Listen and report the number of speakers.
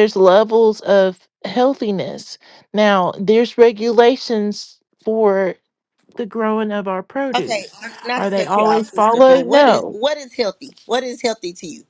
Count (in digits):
2